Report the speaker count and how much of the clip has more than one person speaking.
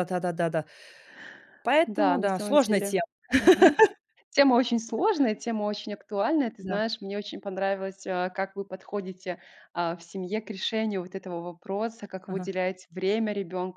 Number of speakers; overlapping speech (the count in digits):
2, about 10%